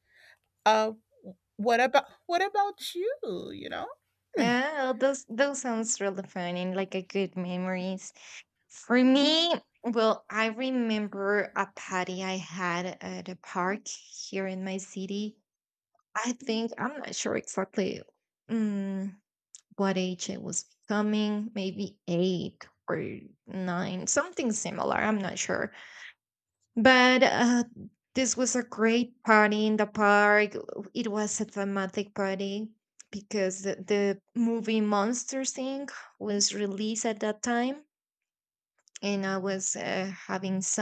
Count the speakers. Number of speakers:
2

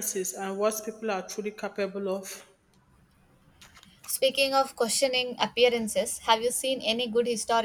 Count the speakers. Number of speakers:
2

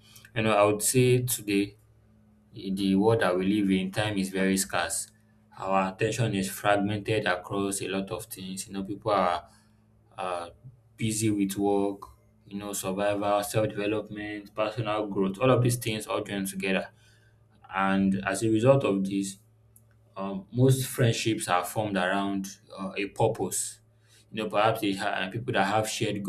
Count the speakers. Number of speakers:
1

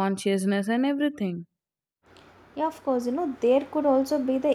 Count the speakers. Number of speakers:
2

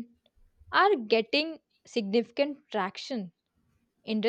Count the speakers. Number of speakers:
1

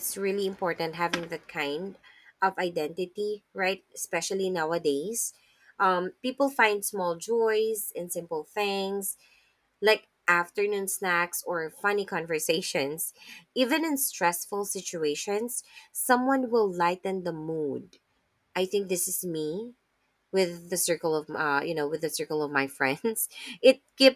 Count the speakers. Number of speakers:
1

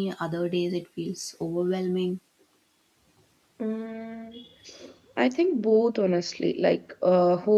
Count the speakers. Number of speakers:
2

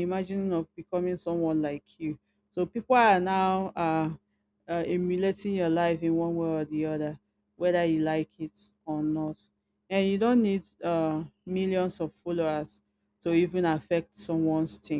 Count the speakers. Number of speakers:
1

